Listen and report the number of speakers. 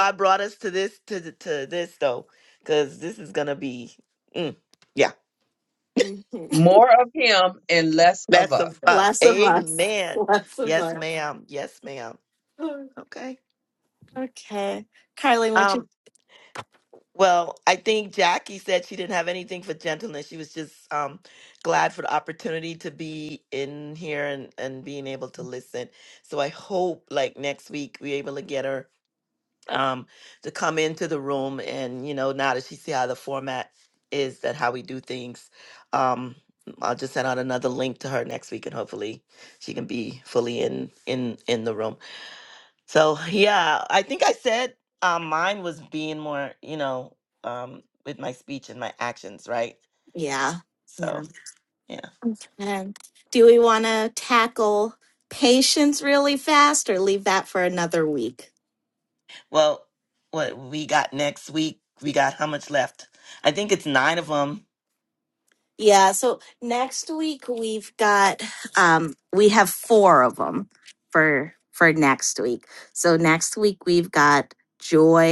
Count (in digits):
3